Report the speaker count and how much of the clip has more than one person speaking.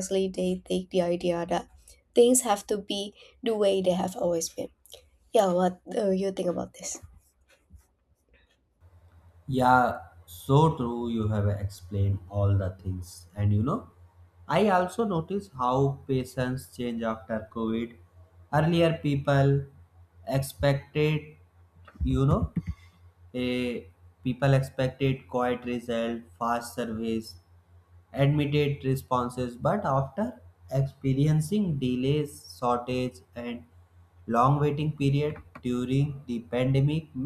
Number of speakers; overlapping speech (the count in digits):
2, no overlap